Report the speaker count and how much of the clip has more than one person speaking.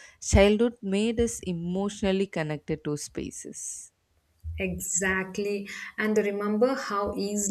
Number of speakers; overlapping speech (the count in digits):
2, no overlap